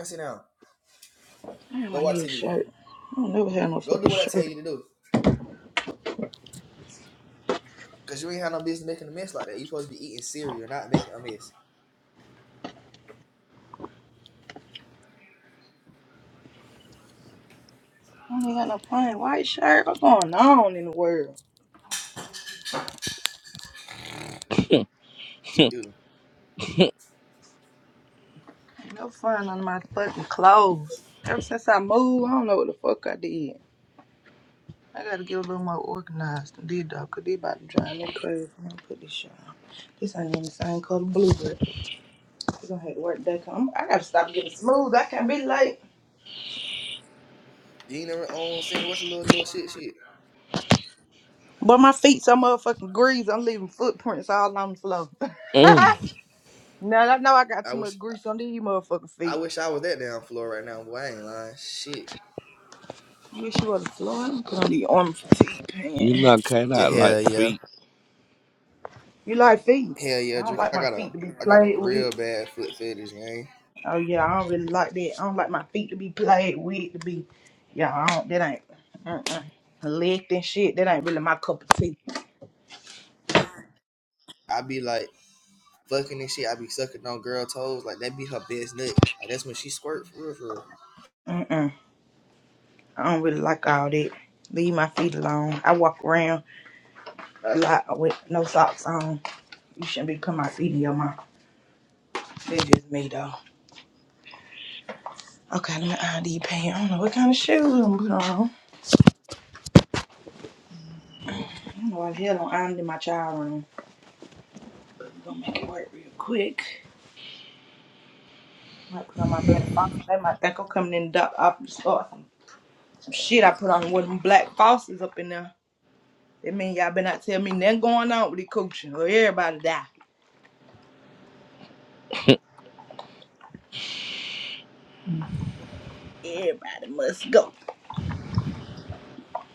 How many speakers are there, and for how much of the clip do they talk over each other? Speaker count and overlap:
3, about 3%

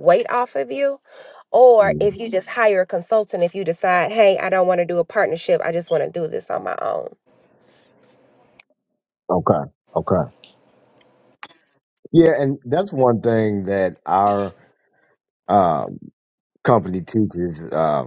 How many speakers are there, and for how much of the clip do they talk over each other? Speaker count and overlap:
2, about 2%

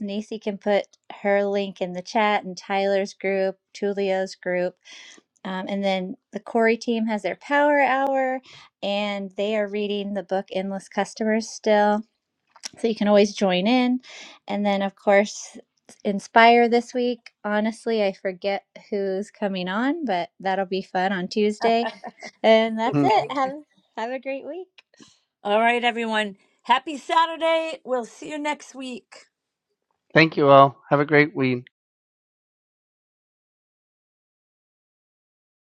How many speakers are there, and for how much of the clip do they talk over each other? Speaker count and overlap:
3, about 1%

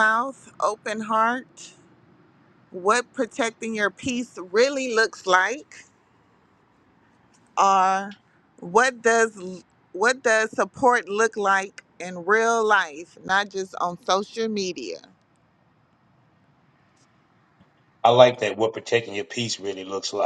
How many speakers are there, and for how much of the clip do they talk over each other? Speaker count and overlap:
2, no overlap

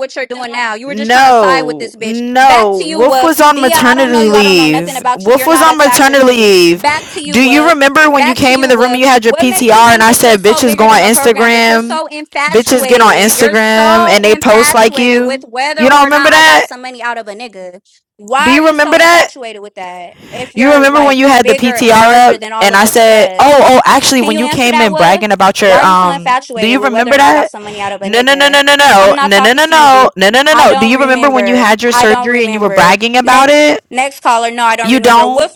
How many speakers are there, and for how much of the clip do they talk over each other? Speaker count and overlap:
2, about 72%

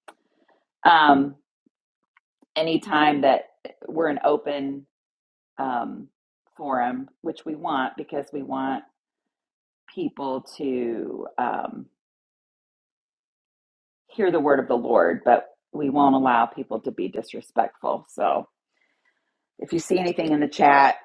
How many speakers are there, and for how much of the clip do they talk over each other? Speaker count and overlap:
1, no overlap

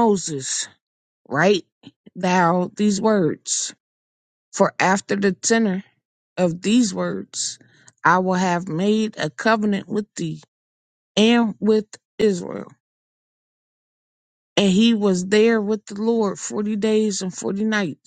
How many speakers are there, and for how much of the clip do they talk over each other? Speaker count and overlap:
1, no overlap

